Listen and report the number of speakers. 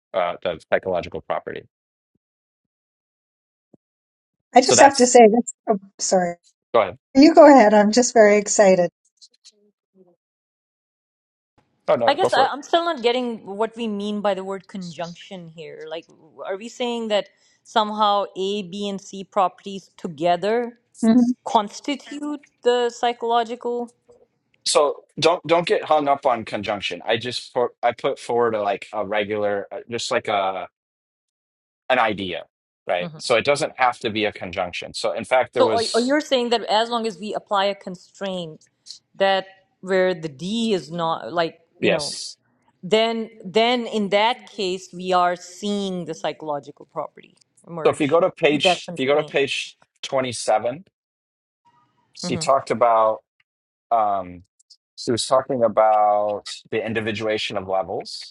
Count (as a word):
three